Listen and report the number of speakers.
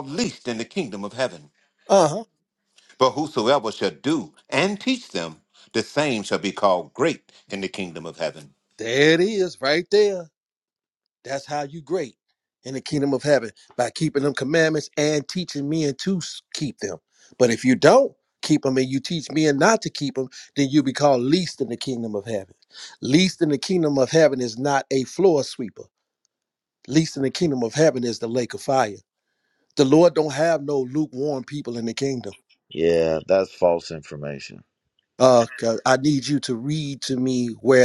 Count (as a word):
three